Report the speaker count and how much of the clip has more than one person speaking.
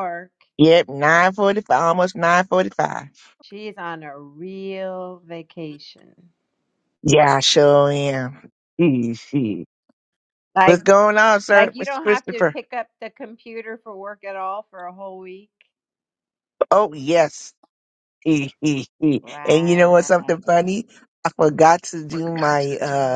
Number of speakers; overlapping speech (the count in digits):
2, about 9%